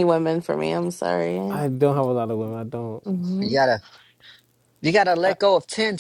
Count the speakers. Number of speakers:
3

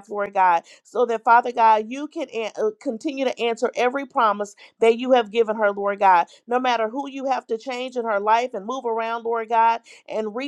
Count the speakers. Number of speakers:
1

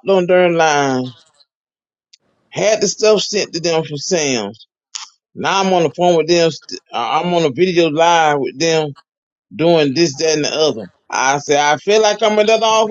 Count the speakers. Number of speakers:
1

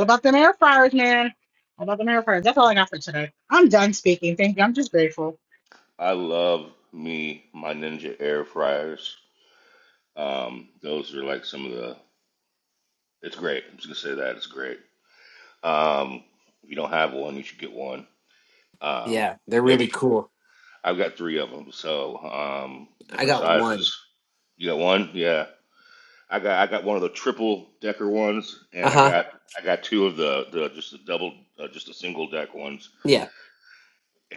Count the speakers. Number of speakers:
3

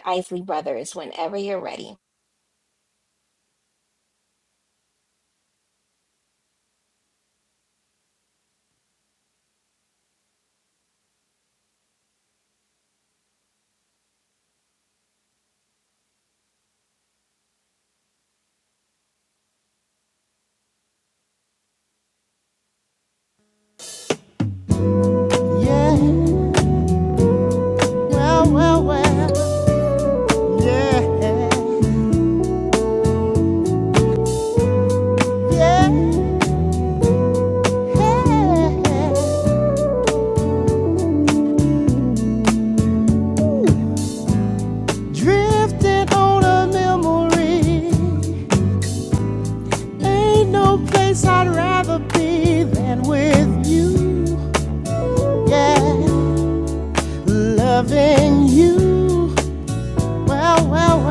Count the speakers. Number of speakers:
2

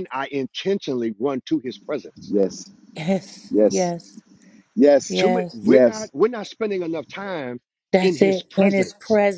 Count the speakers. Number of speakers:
3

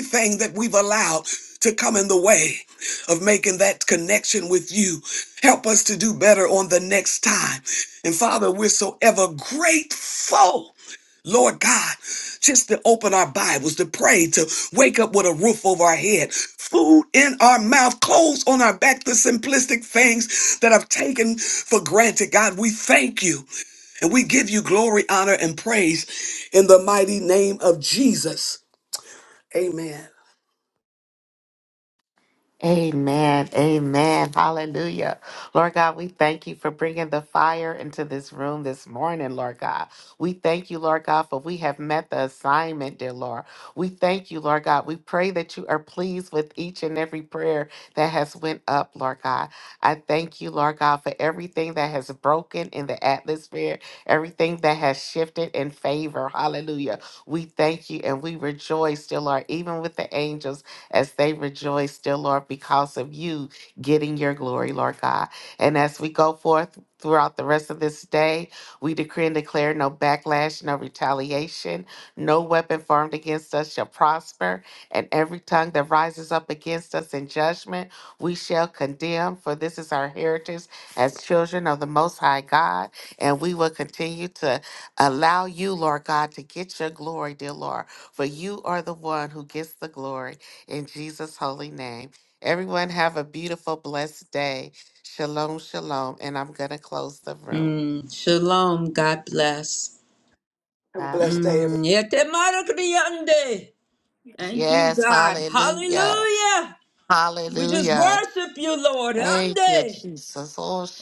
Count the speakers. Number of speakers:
3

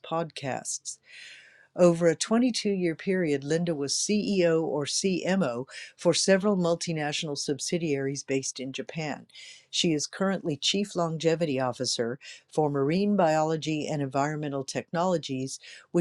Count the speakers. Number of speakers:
1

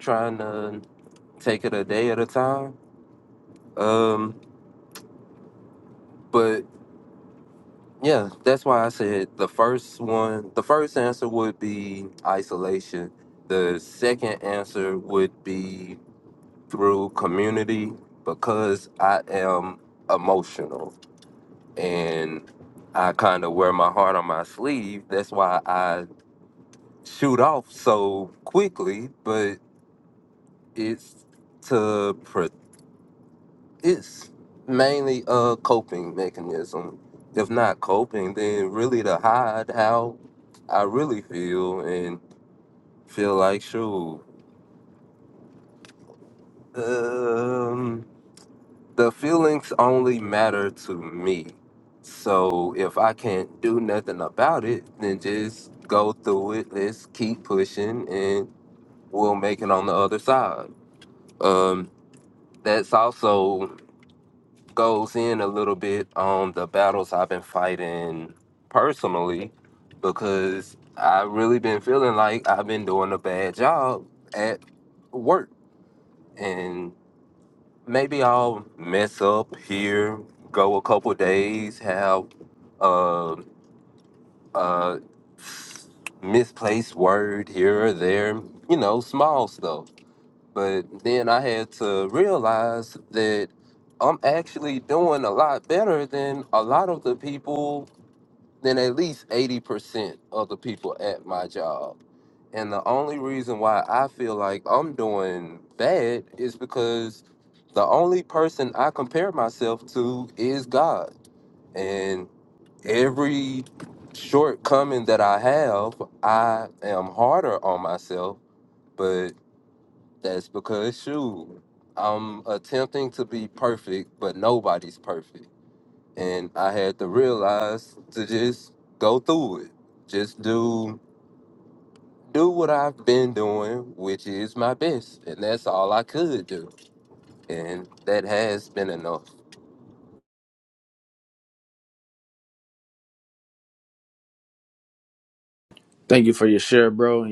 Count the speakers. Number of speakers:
2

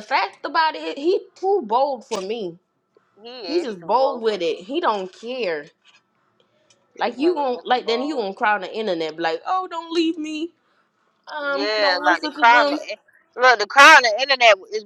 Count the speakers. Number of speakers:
2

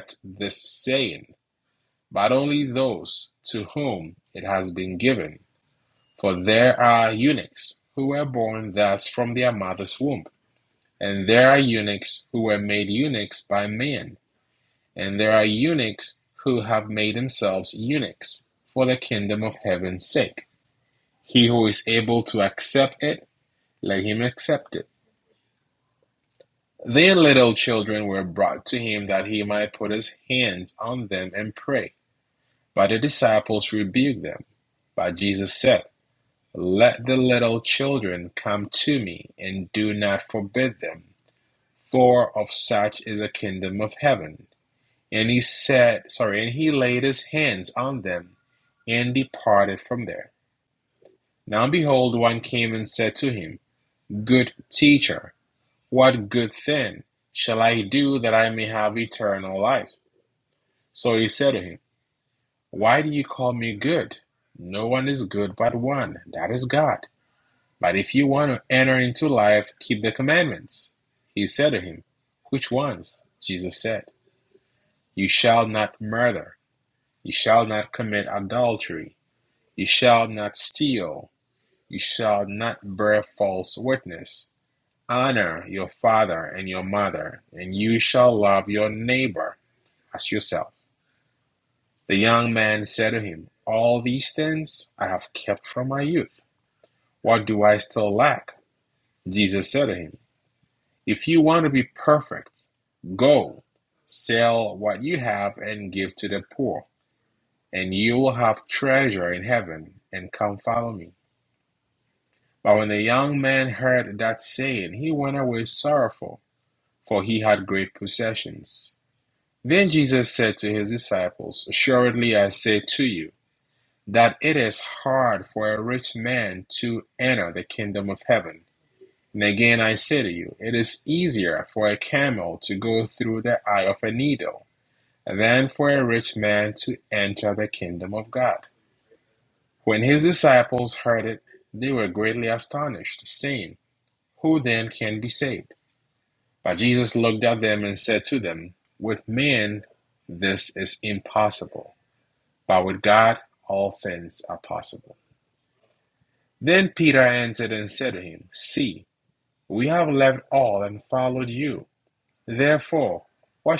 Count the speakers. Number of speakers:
1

